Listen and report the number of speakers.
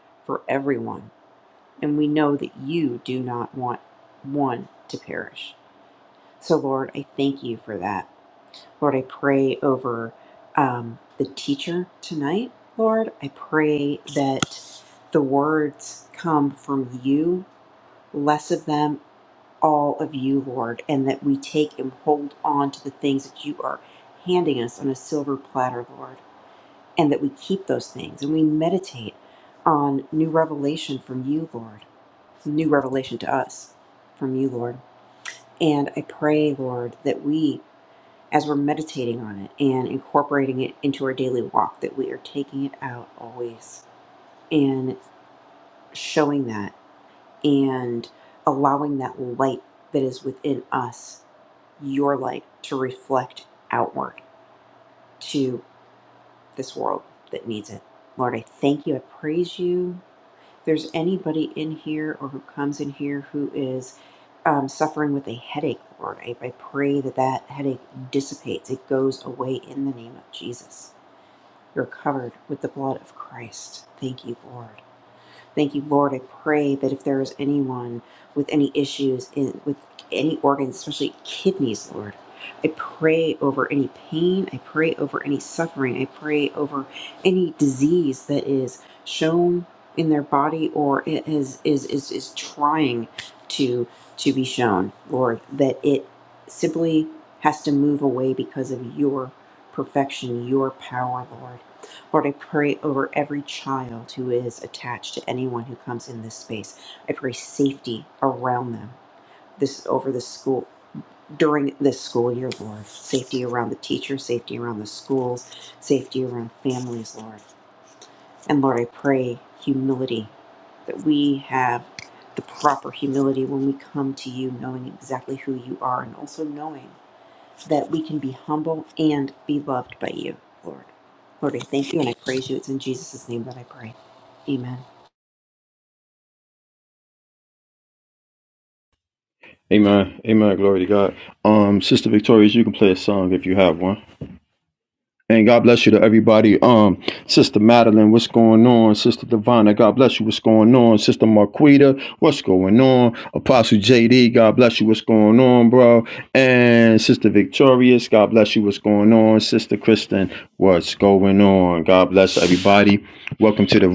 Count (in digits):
2